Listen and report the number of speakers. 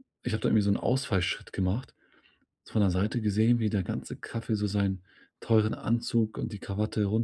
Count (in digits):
1